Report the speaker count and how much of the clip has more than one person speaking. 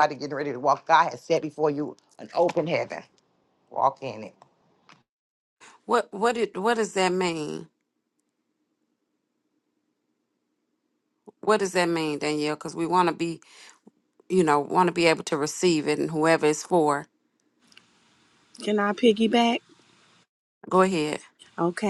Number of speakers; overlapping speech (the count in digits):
3, no overlap